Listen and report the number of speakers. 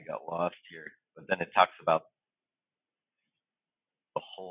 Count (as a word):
one